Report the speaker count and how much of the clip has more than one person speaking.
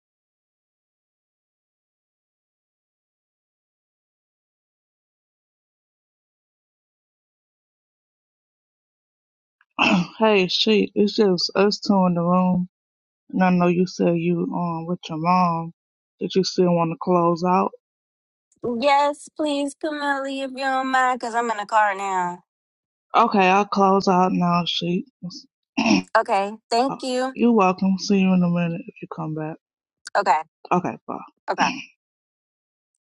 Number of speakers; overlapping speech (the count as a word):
two, no overlap